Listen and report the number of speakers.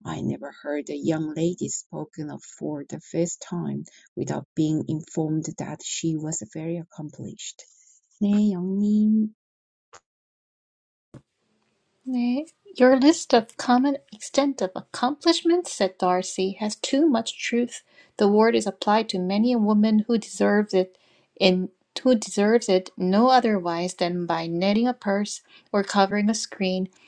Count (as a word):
two